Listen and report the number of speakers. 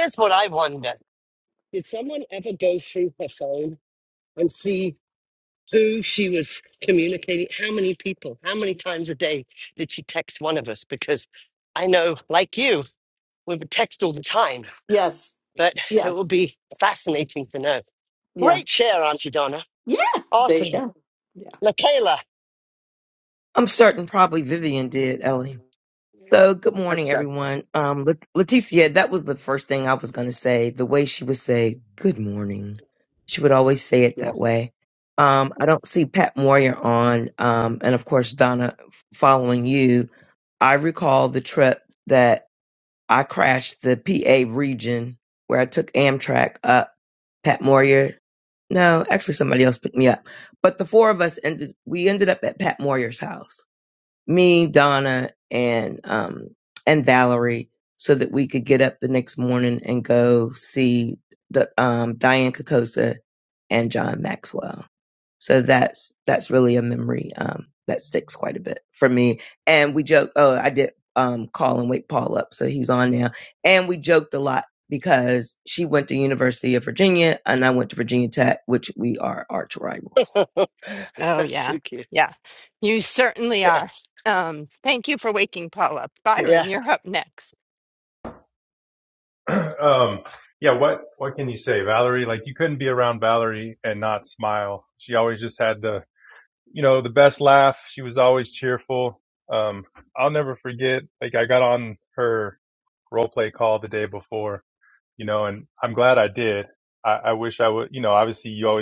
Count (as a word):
five